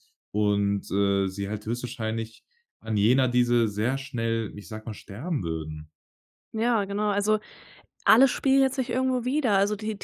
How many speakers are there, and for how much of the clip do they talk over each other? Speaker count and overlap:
2, no overlap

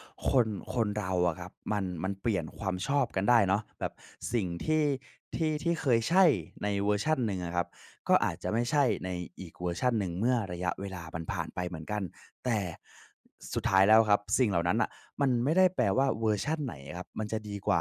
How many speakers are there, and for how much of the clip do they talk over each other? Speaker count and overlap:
1, no overlap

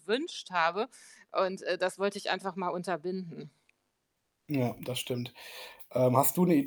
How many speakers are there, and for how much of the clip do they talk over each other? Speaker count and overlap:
2, no overlap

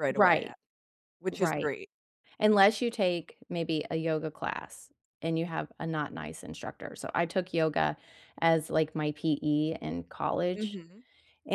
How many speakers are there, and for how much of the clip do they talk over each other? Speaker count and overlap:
2, about 8%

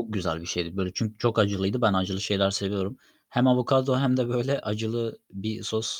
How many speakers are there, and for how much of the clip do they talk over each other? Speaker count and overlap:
1, no overlap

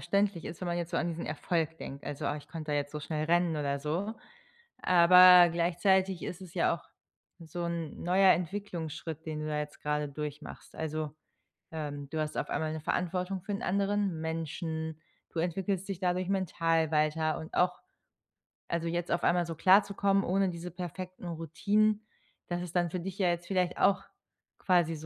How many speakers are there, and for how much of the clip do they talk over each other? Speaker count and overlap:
1, no overlap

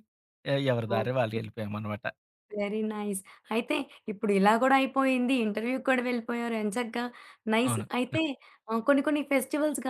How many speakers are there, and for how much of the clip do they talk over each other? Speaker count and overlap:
2, about 11%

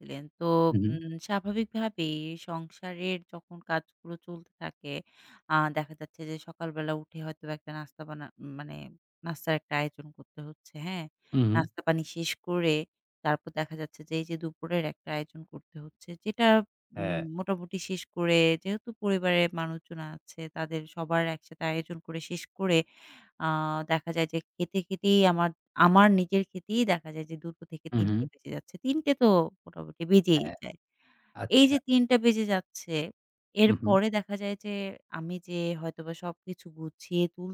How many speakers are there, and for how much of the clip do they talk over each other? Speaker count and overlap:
2, about 5%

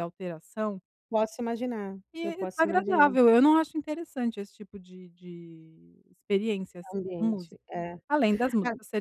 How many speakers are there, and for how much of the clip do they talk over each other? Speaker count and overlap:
2, about 15%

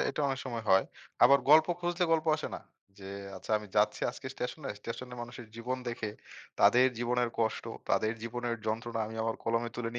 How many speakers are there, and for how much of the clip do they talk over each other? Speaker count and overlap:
1, no overlap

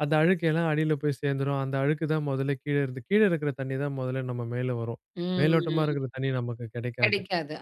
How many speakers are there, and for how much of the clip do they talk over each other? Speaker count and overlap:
2, about 11%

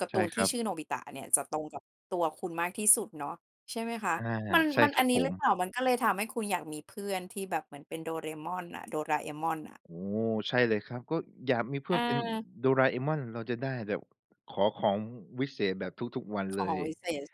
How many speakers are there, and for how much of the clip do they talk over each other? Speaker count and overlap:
2, about 10%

